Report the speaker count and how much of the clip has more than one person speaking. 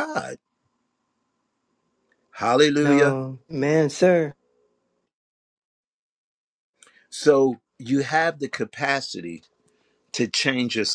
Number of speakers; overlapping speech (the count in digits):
2, about 3%